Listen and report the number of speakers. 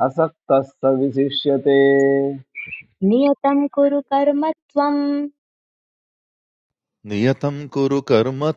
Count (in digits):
3